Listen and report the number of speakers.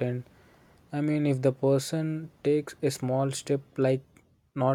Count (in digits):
1